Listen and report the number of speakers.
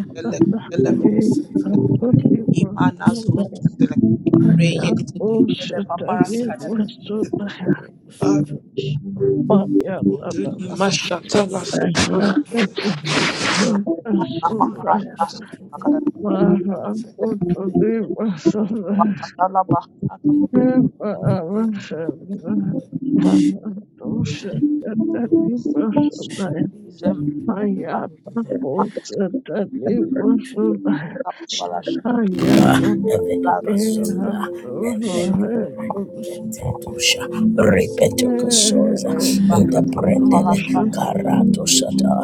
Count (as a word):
four